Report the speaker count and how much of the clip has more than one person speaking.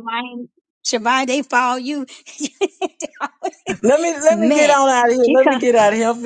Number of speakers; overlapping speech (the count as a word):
two, about 14%